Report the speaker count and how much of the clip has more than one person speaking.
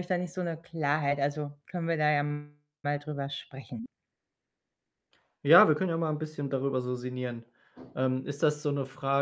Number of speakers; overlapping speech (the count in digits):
2, no overlap